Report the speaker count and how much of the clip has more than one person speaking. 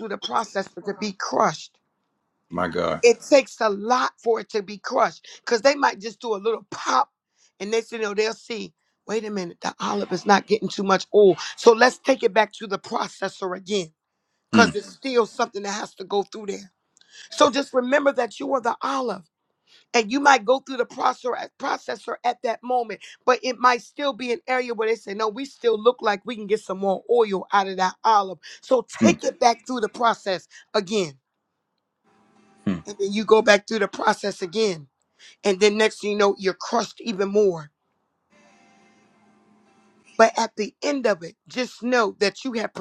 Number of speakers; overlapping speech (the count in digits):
2, about 1%